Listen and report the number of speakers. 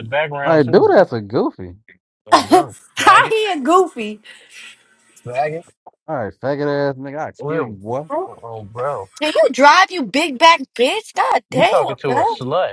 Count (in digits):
4